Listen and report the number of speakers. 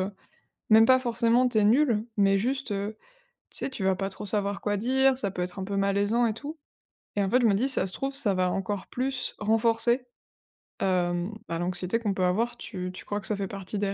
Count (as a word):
one